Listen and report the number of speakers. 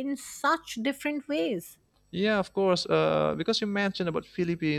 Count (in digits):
2